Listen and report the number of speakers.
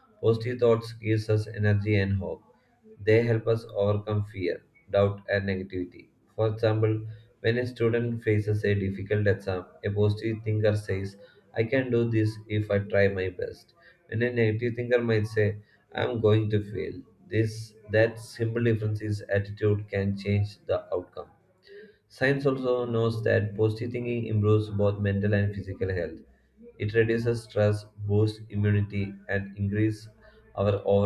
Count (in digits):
1